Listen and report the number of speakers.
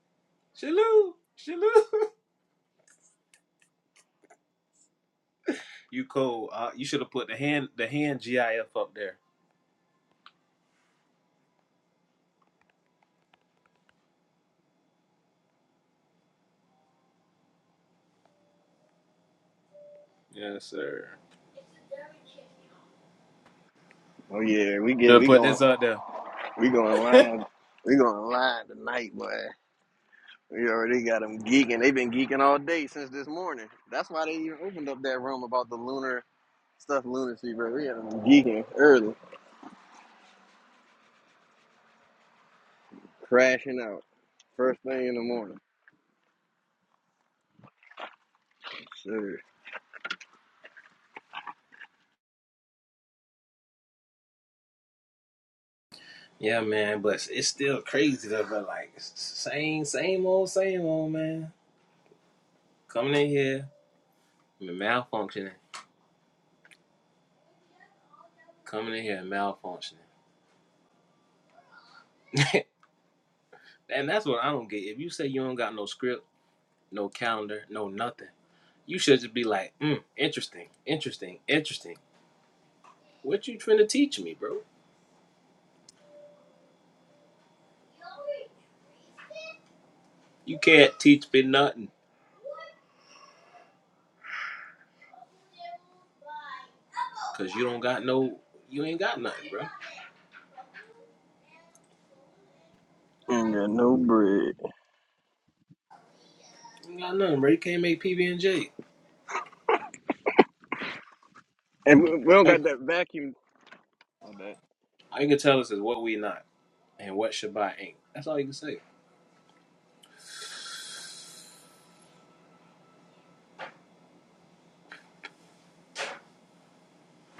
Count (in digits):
2